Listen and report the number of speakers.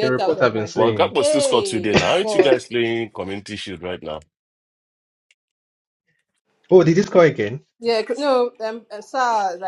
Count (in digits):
3